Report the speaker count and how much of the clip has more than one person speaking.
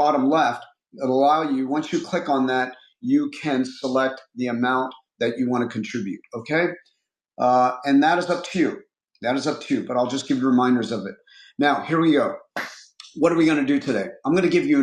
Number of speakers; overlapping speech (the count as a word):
one, no overlap